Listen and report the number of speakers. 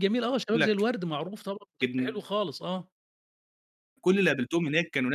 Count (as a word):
two